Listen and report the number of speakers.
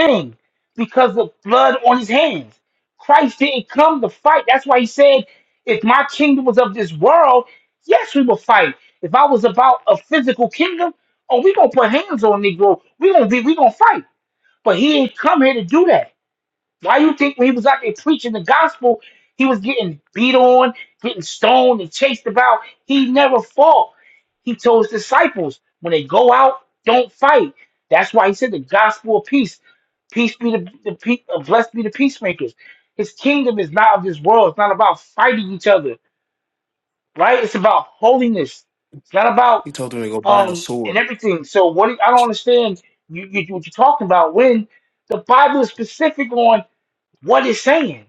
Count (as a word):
two